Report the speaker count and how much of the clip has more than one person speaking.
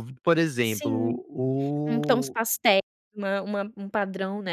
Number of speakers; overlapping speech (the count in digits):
2, about 23%